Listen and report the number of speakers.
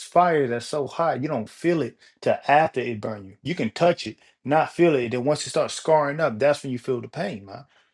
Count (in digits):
1